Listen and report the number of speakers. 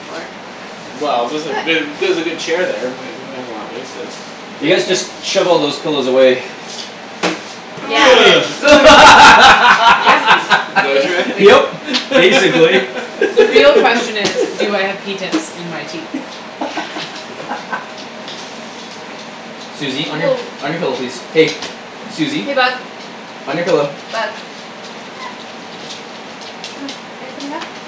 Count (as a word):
four